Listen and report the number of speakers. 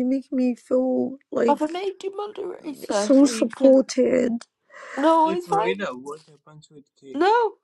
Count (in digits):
3